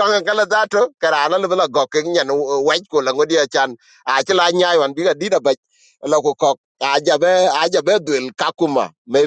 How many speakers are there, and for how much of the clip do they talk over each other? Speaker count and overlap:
one, no overlap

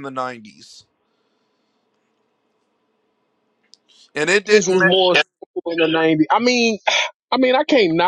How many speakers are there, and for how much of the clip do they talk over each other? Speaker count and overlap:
two, about 5%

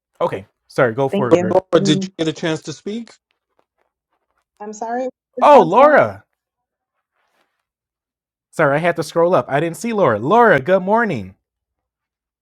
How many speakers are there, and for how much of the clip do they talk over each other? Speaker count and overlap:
three, about 13%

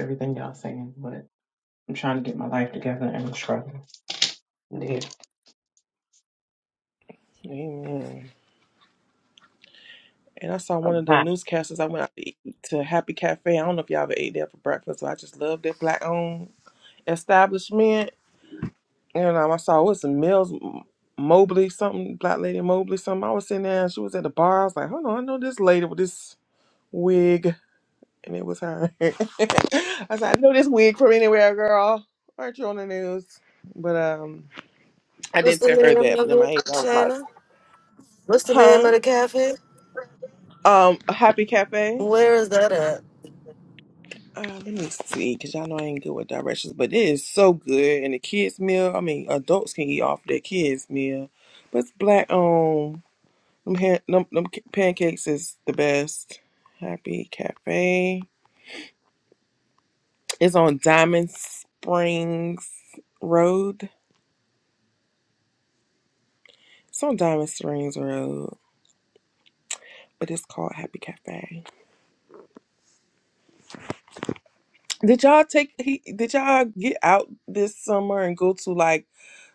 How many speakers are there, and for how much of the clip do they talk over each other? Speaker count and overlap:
three, about 3%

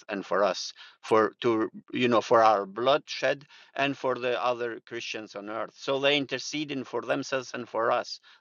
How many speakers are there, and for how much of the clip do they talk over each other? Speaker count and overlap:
one, no overlap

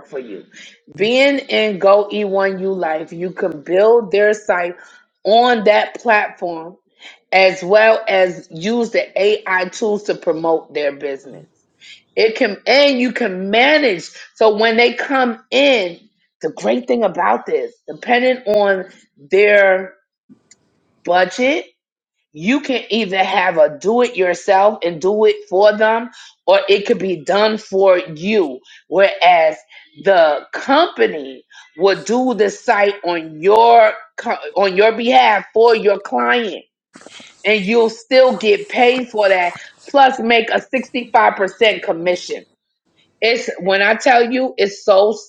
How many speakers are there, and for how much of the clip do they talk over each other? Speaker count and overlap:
one, no overlap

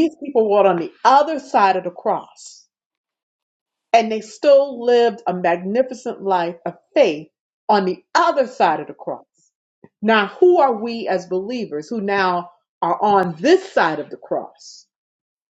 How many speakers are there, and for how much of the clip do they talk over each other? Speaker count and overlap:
one, no overlap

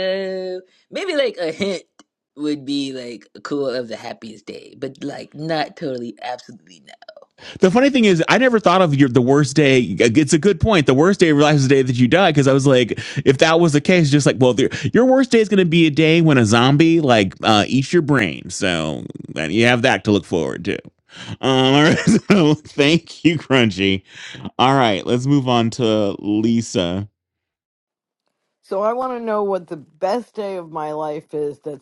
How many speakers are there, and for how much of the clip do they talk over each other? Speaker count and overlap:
three, no overlap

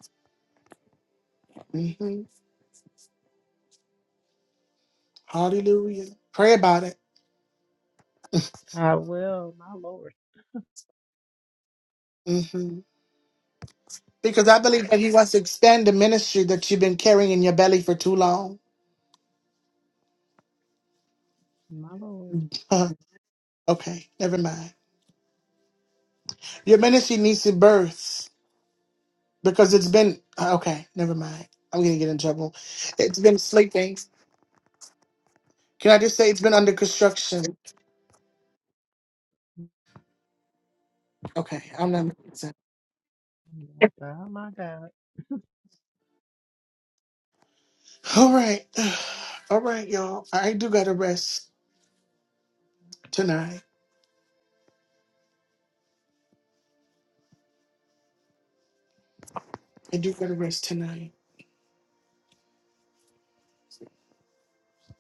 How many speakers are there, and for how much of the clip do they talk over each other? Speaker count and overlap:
two, no overlap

